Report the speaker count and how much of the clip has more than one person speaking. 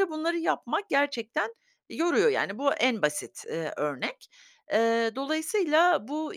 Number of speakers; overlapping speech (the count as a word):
one, no overlap